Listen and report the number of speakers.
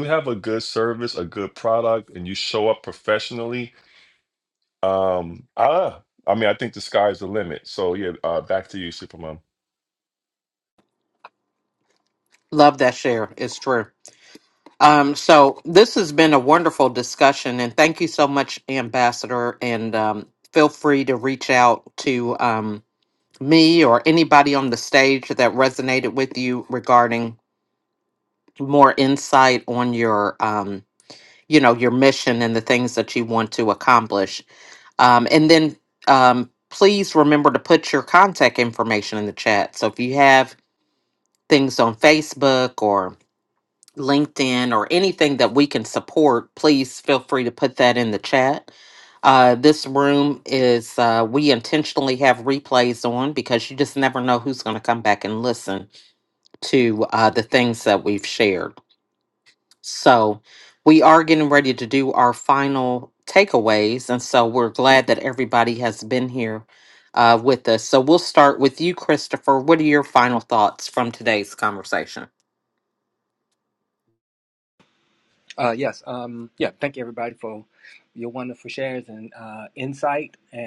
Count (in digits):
3